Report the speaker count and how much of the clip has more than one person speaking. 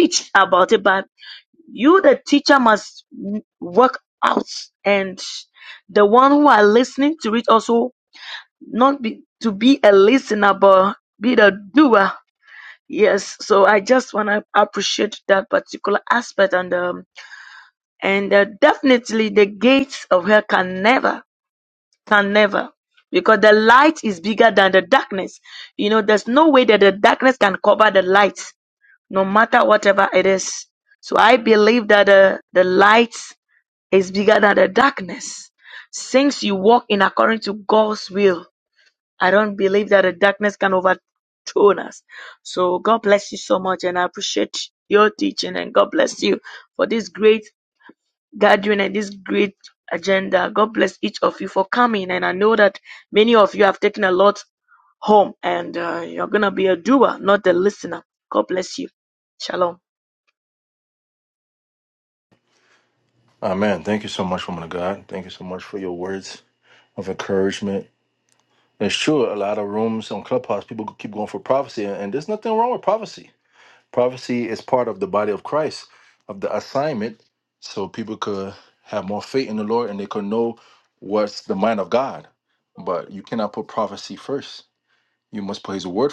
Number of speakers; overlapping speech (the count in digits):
2, no overlap